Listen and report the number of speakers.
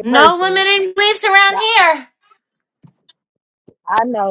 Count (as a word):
two